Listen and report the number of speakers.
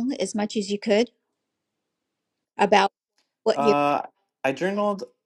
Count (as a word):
two